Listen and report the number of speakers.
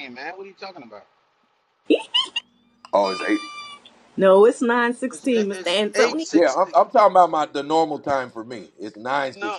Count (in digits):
3